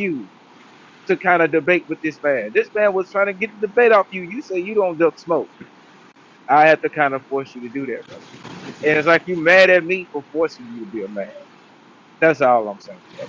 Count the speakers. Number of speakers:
1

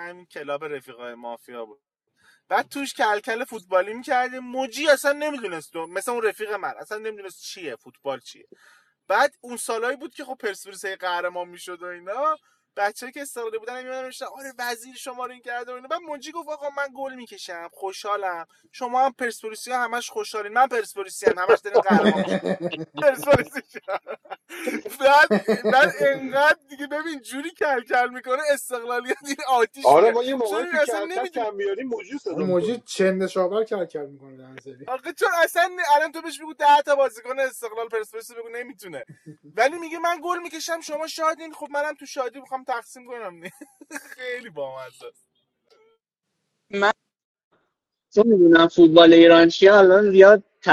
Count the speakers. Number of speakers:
4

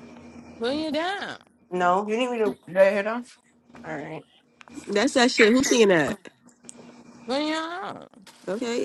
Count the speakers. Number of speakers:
3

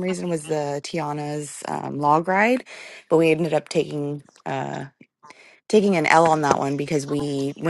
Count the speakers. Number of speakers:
1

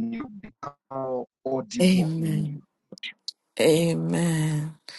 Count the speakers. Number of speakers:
2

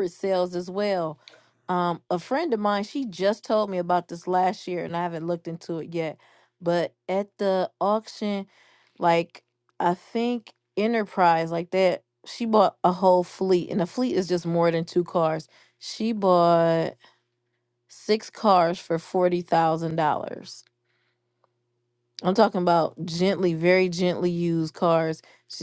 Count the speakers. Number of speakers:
1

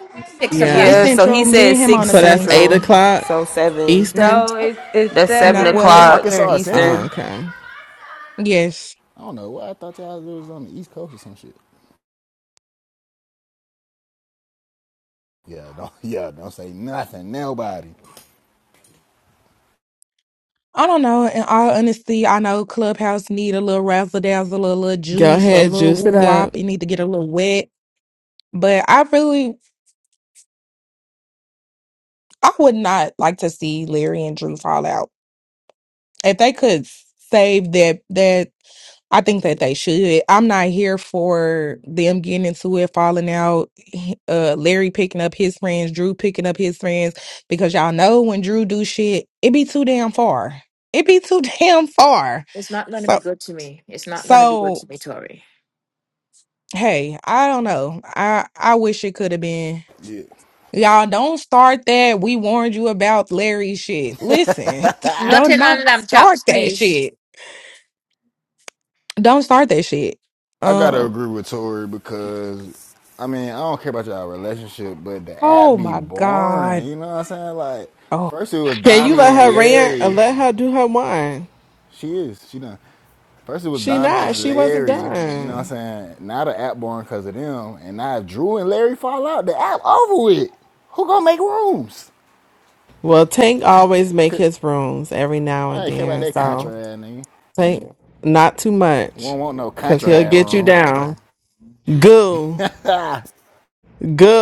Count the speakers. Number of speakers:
6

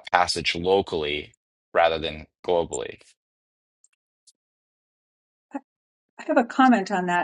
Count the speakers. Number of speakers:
2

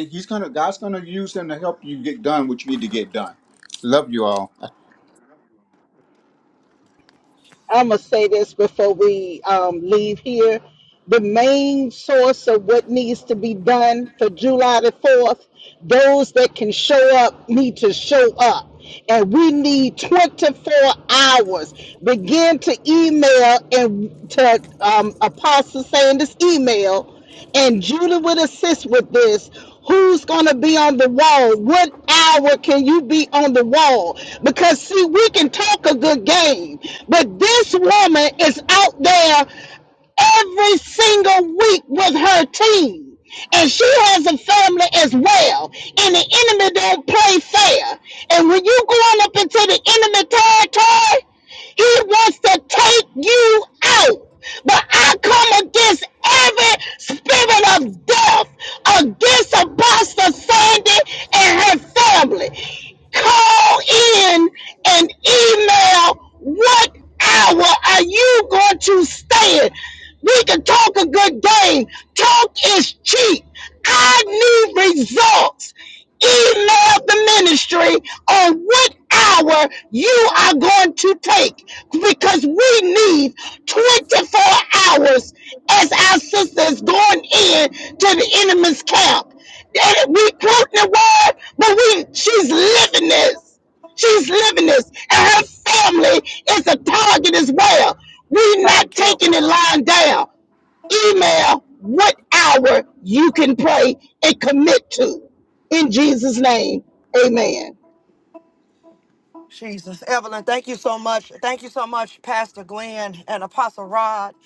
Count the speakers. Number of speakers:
3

